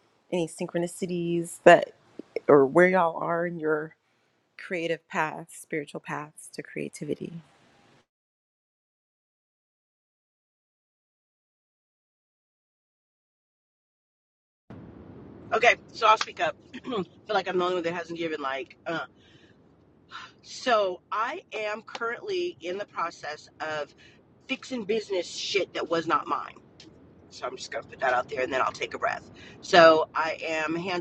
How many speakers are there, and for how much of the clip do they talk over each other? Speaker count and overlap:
two, no overlap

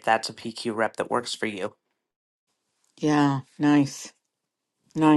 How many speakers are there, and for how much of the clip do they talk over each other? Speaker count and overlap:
two, no overlap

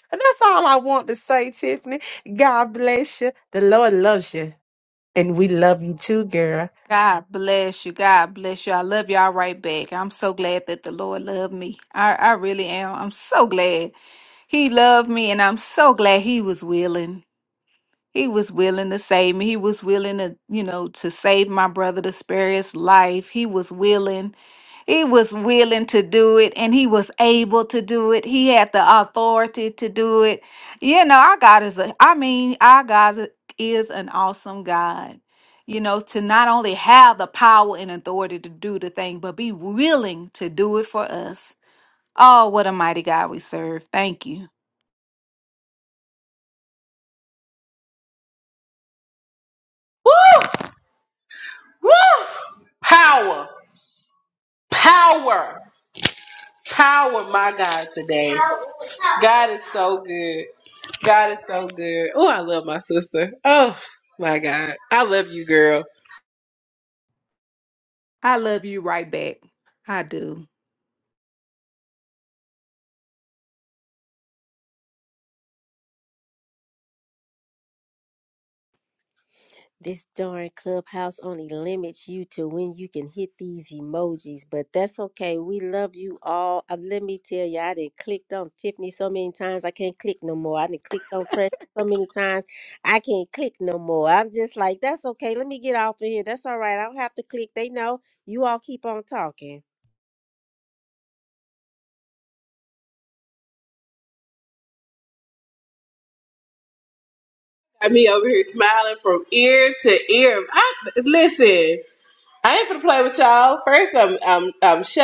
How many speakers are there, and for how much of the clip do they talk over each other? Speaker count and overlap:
four, no overlap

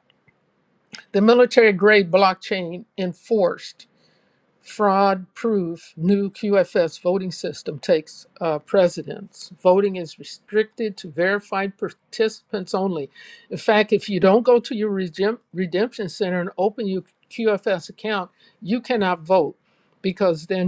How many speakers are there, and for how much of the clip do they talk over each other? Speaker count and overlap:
one, no overlap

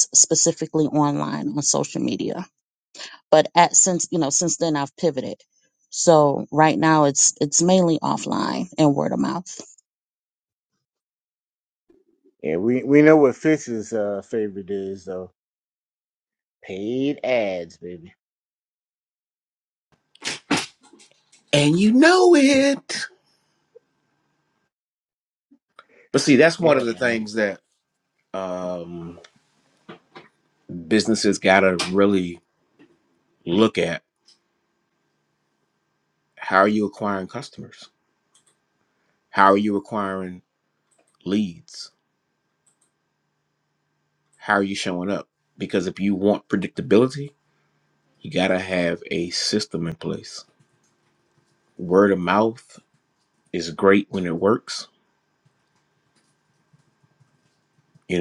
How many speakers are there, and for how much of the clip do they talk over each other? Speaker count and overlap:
three, under 1%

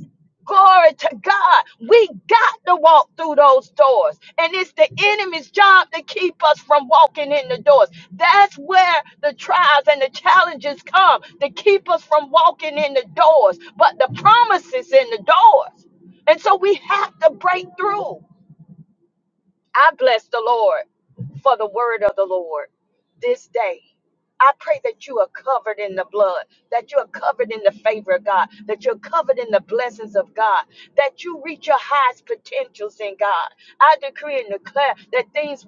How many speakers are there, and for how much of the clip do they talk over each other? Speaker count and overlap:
one, no overlap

